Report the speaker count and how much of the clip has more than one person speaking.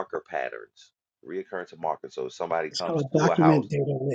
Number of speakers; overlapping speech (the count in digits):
2, about 22%